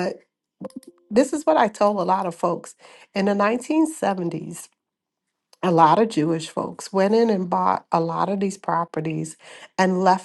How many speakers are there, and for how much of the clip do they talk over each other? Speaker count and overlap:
1, no overlap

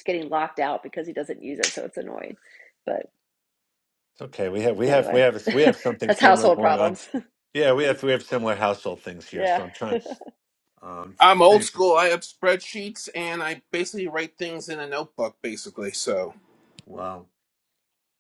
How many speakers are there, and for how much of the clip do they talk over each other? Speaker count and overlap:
3, about 9%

